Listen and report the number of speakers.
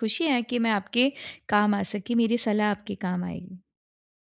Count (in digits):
1